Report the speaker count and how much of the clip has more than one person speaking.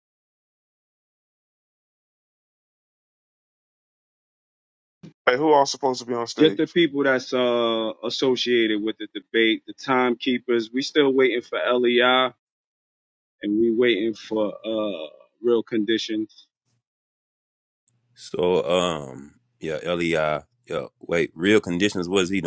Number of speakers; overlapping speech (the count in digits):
3, about 1%